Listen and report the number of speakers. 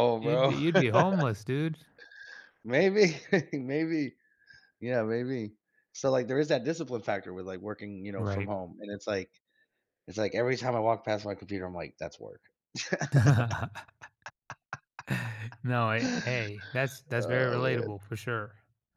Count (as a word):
two